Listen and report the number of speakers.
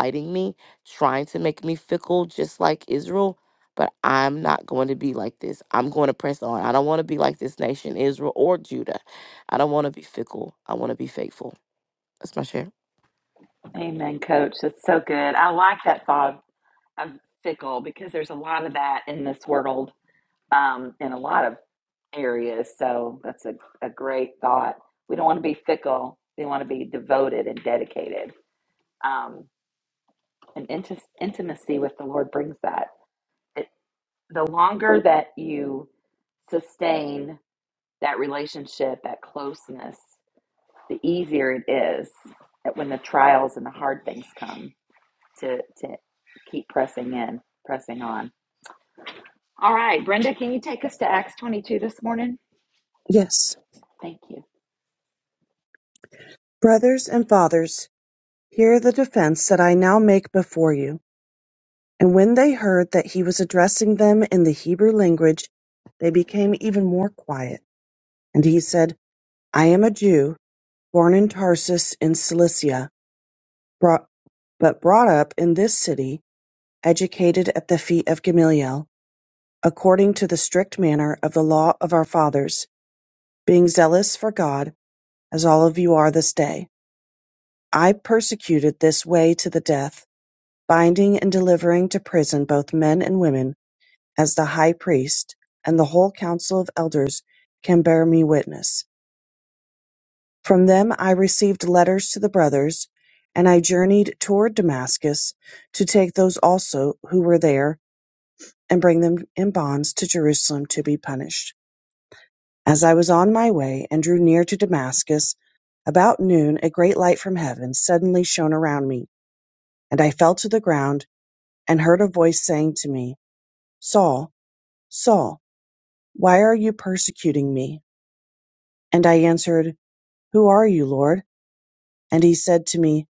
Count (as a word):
three